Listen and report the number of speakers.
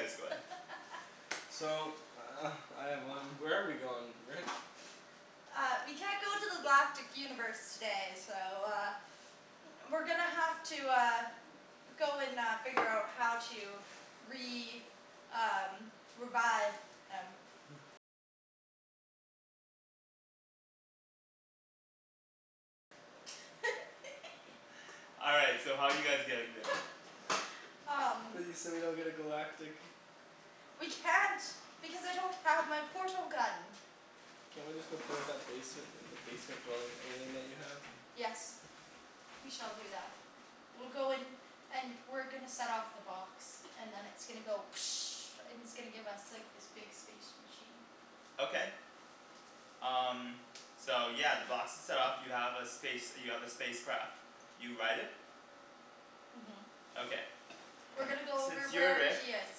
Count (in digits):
3